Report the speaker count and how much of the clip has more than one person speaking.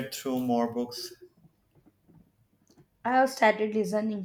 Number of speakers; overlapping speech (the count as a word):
two, no overlap